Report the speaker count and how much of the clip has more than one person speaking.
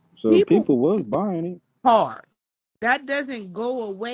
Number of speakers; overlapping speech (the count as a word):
two, about 10%